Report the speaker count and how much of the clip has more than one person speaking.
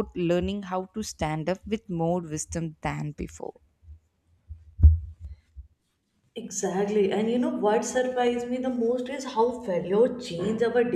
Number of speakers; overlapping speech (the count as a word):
two, no overlap